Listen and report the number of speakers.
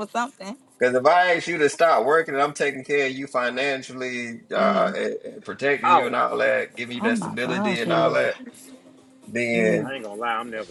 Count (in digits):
3